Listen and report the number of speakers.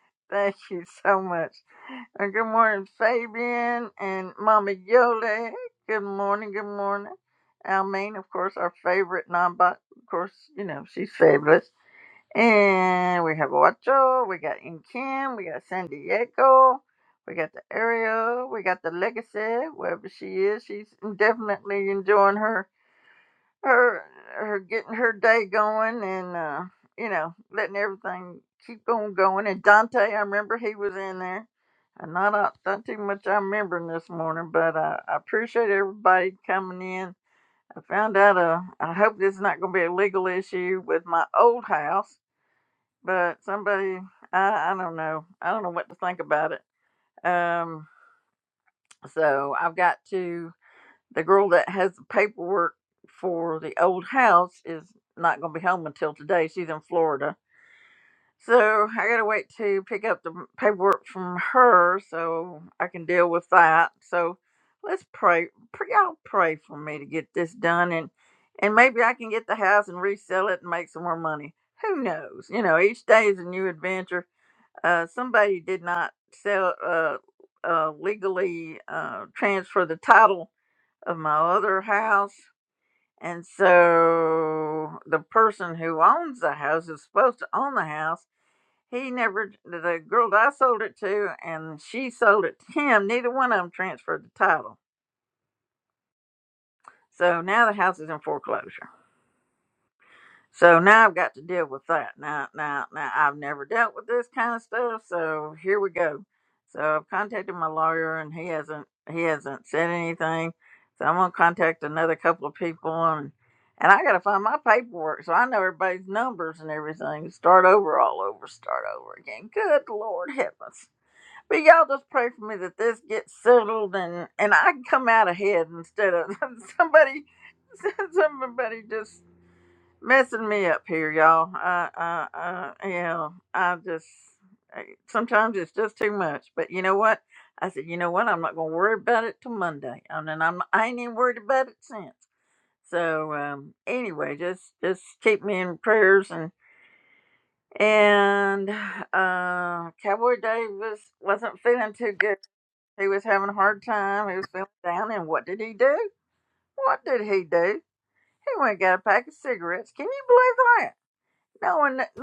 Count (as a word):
one